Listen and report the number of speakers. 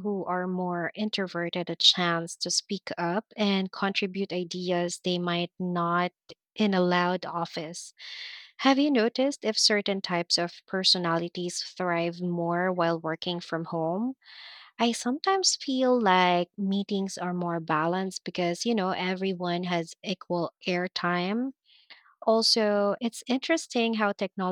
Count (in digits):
1